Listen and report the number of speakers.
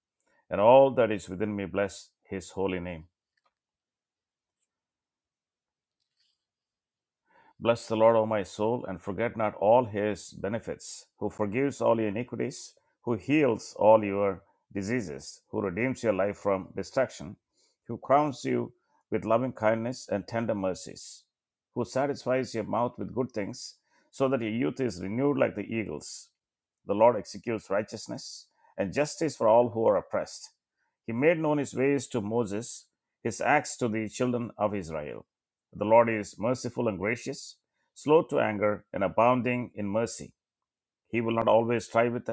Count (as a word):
one